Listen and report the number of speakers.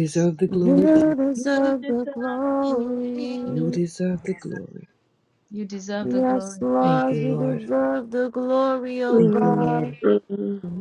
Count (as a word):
four